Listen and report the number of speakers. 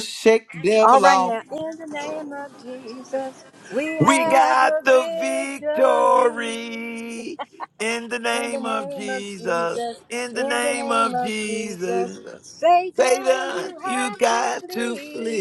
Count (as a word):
three